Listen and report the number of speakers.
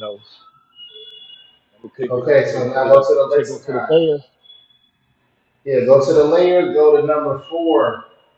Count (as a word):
two